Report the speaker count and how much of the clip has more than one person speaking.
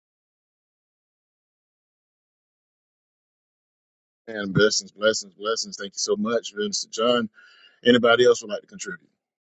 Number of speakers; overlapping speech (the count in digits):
1, no overlap